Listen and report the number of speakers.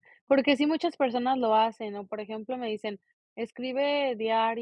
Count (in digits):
1